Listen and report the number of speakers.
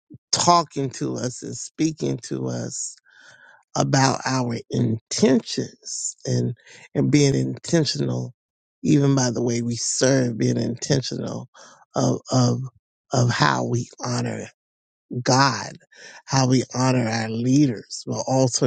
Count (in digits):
1